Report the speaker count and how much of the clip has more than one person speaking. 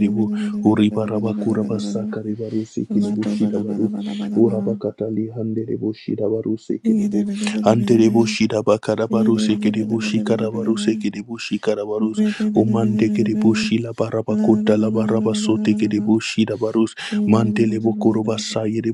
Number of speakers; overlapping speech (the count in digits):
2, about 55%